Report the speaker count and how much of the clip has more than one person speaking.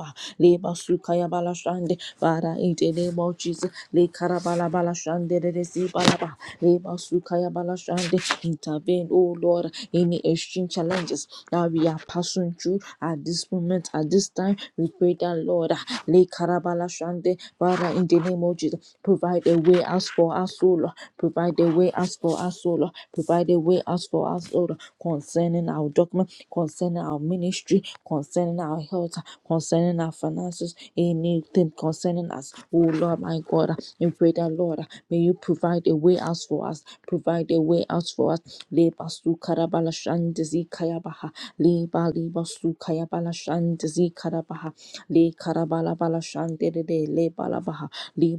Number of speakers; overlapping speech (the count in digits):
1, no overlap